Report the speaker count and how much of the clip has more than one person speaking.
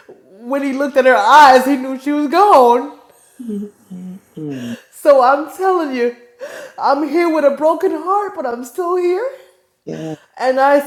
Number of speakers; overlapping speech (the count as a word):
two, no overlap